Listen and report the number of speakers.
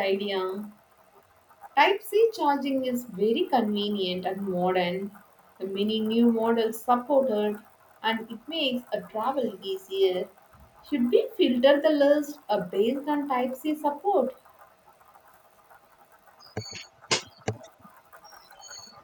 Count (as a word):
one